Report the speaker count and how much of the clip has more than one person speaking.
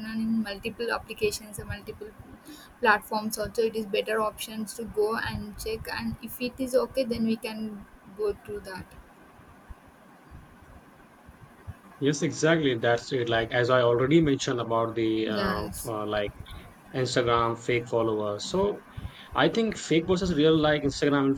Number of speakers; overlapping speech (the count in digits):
2, about 2%